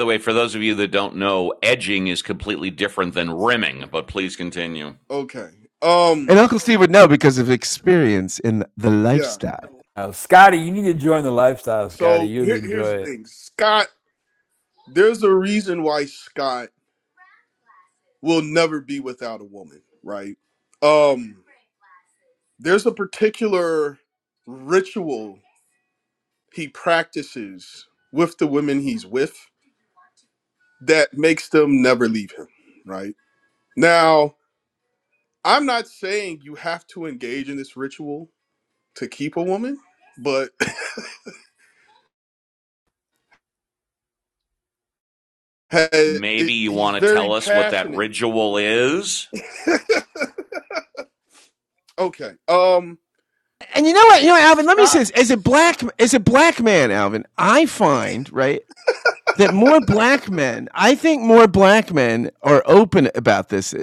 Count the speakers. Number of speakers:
four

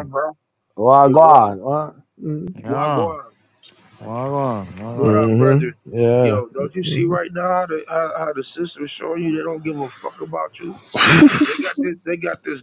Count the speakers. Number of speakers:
three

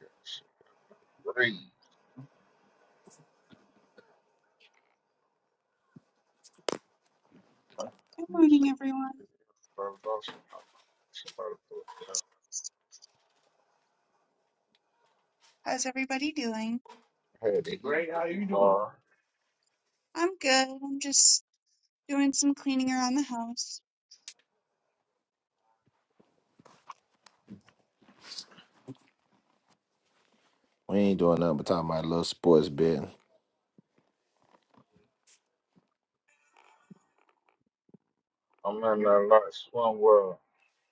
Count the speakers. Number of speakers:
three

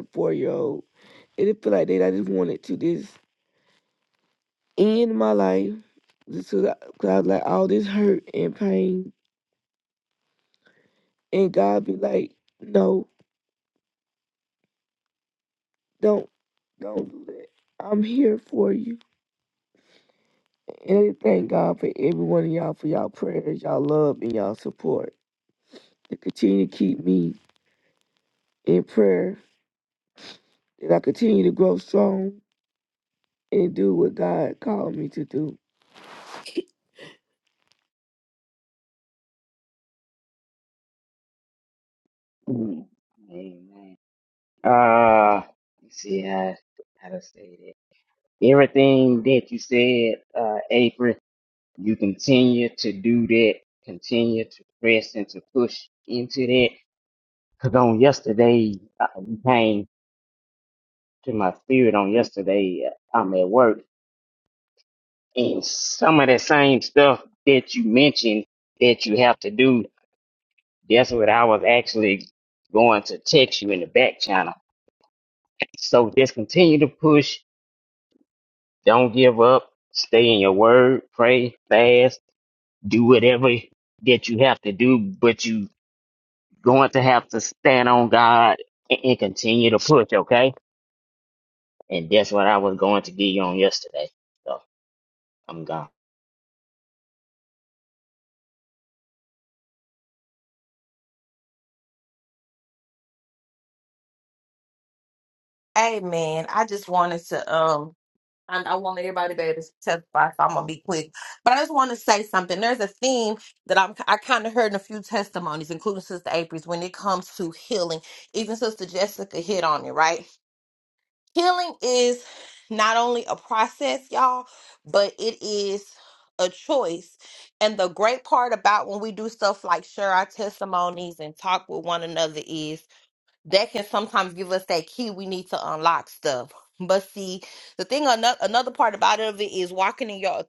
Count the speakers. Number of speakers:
three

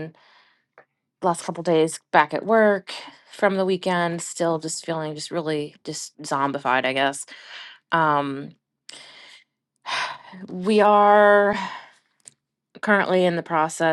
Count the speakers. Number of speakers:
one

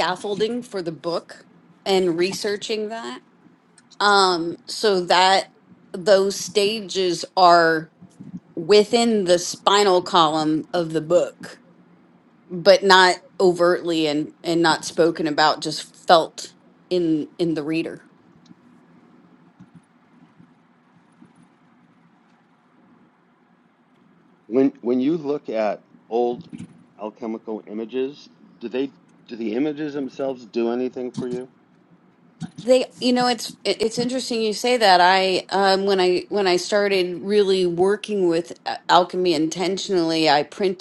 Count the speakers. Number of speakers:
two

